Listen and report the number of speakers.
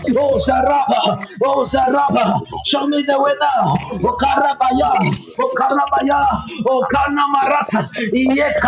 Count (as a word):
one